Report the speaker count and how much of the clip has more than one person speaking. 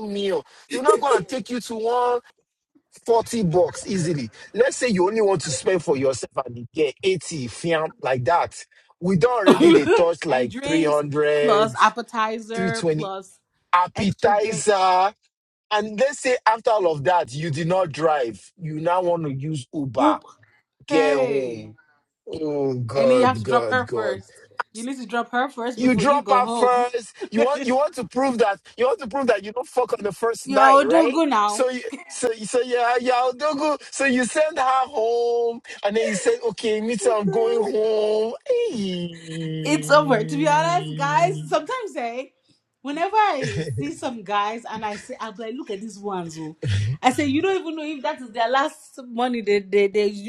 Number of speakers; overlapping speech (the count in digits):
2, about 12%